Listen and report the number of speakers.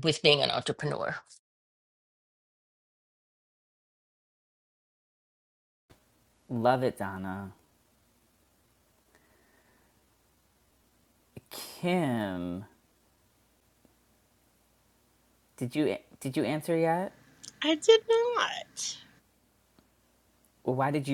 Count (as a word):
three